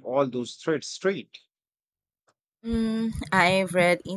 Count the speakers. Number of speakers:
two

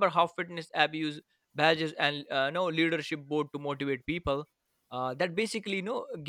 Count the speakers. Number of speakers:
one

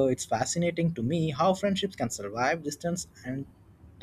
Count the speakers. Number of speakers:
one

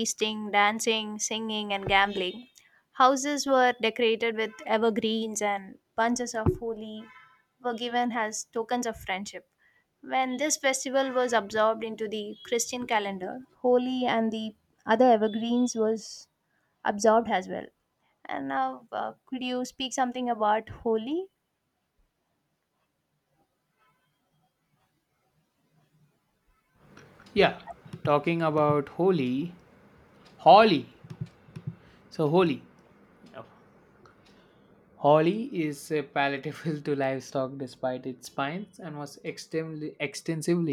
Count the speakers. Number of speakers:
two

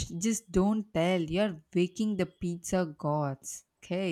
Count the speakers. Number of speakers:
one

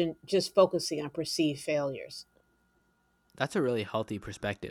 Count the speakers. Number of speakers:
two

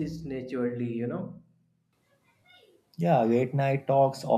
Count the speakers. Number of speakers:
two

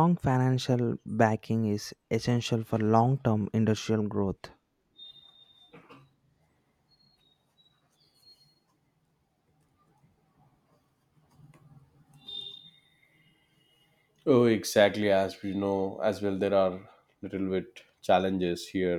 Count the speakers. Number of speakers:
two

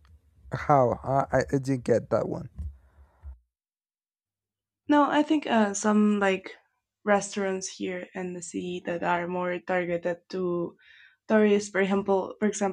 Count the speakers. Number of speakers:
two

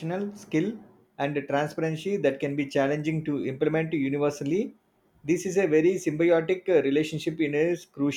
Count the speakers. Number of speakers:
one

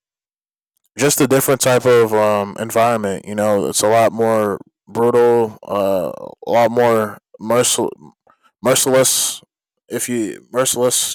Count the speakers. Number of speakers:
one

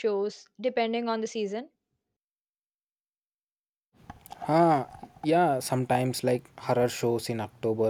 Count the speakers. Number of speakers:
two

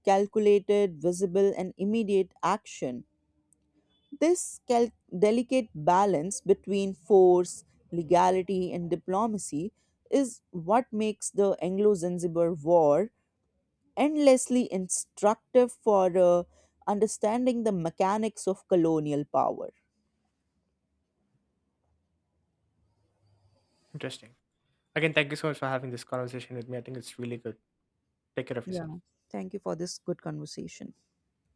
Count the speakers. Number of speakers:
two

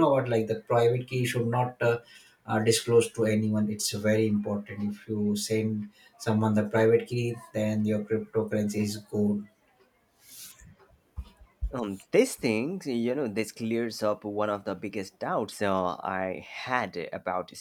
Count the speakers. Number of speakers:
two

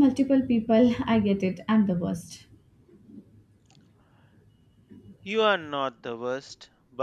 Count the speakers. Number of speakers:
two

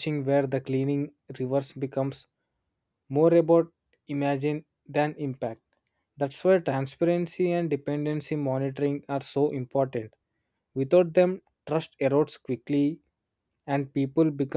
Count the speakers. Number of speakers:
one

